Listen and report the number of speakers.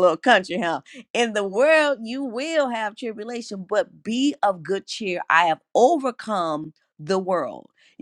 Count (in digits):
1